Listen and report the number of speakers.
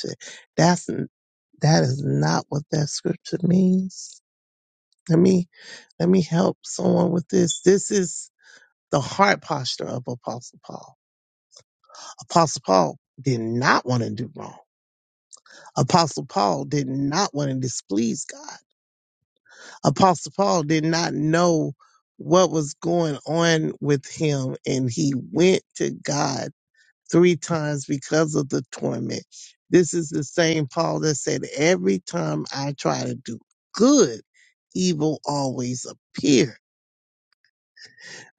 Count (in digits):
1